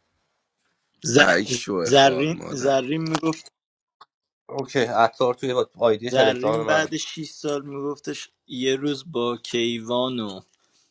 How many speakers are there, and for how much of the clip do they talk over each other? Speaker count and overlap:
three, about 16%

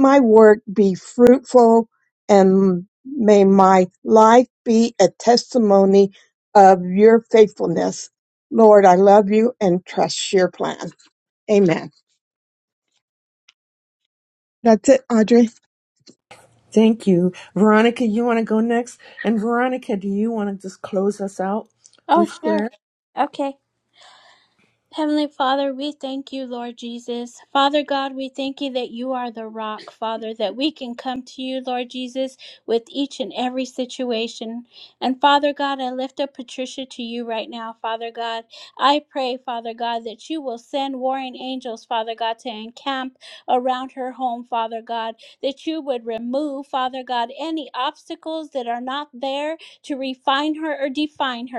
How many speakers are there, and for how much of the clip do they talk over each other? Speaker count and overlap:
three, about 1%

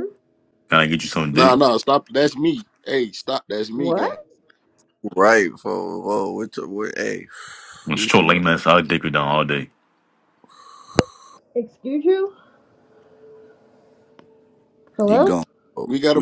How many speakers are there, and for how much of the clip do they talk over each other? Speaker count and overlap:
four, about 11%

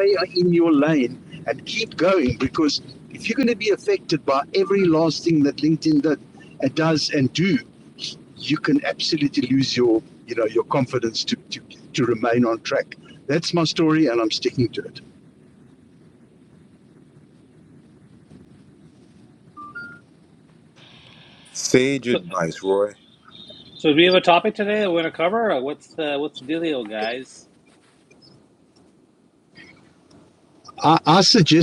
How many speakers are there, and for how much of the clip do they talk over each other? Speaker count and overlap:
three, under 1%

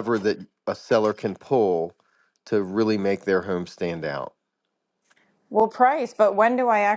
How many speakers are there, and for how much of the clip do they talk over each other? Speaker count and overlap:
two, no overlap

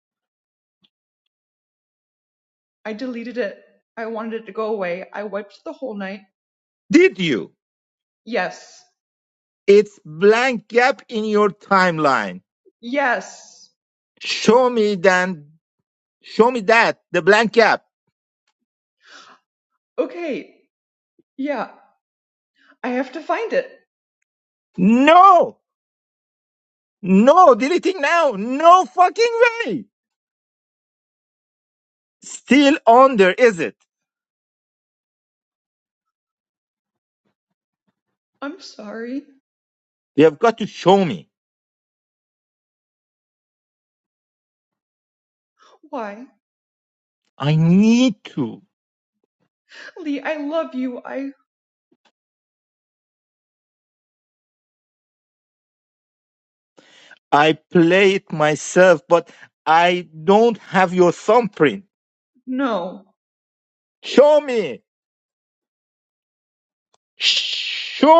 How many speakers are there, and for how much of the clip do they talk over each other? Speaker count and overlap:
two, no overlap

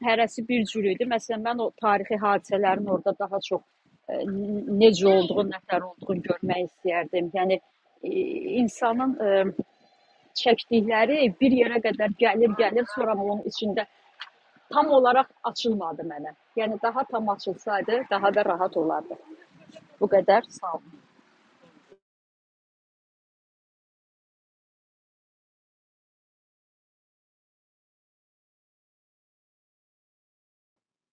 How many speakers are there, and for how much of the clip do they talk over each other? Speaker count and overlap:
one, no overlap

